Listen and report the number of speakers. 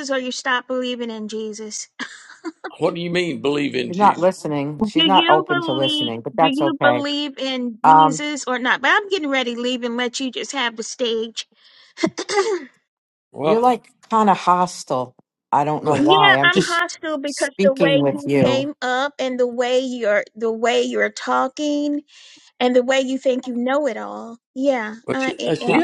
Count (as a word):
three